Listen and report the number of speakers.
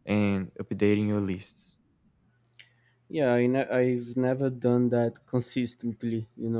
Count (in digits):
2